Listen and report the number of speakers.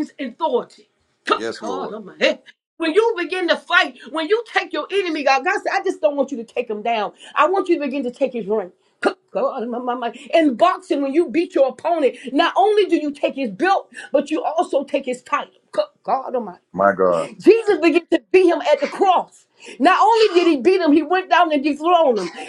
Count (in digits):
2